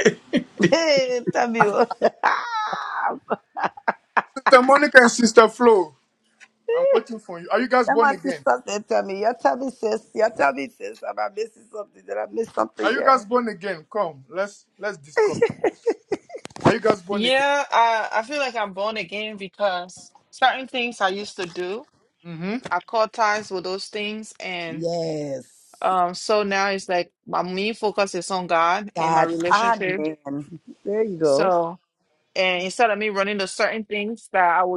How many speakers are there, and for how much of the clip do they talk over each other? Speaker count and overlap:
3, about 7%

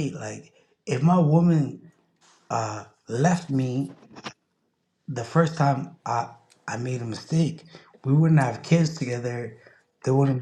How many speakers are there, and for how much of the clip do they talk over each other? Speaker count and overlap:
1, no overlap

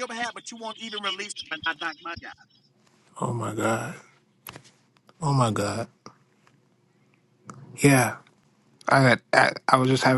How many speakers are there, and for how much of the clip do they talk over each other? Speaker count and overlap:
2, no overlap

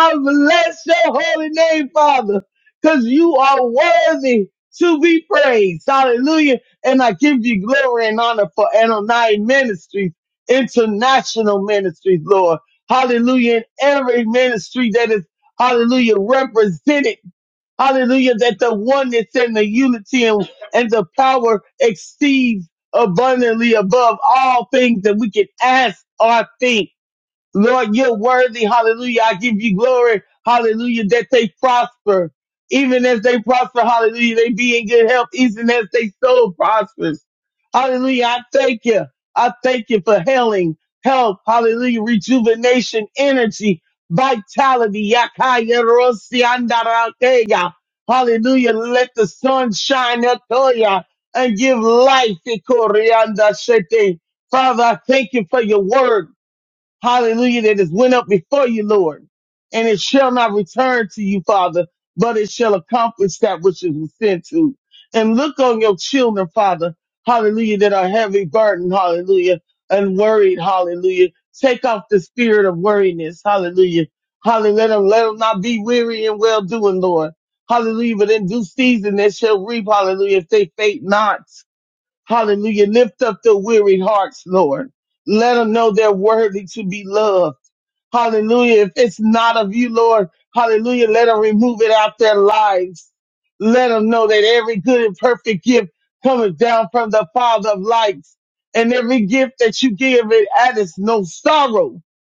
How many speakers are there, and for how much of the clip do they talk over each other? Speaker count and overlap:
1, no overlap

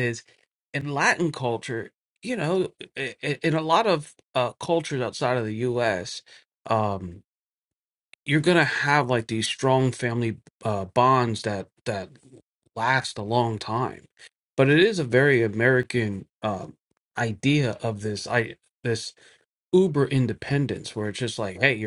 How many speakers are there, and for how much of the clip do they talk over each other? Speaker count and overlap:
1, no overlap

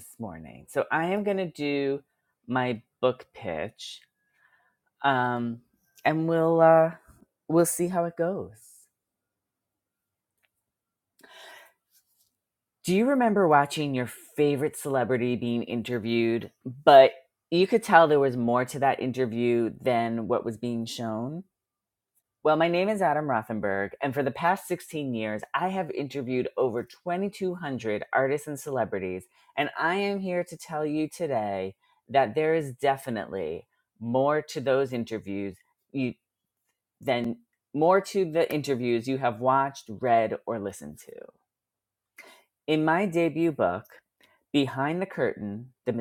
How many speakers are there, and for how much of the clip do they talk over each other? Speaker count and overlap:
1, no overlap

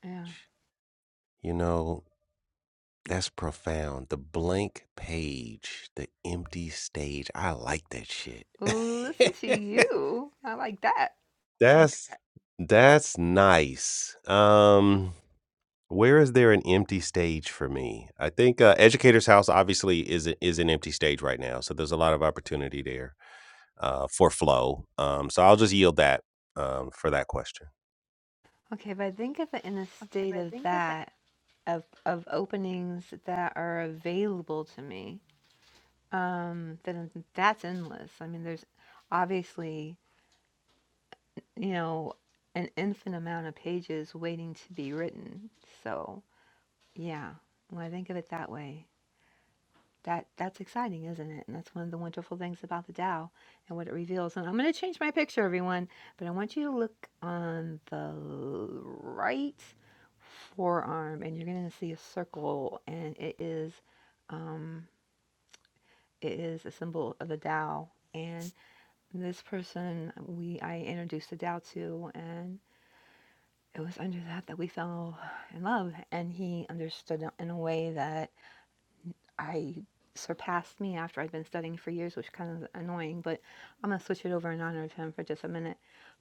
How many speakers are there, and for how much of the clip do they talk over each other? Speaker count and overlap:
2, no overlap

